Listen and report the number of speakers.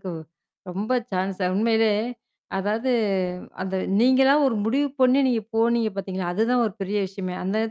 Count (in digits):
1